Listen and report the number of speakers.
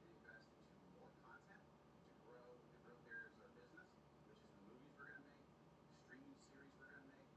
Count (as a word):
zero